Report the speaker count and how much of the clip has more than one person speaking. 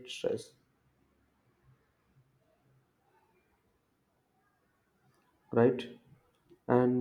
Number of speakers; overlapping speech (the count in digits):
1, no overlap